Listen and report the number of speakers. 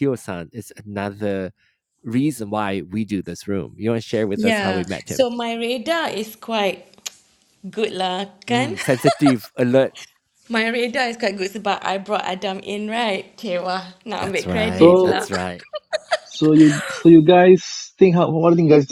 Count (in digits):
3